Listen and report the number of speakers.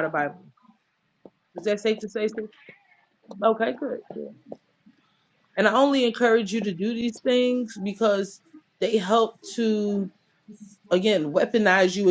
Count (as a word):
one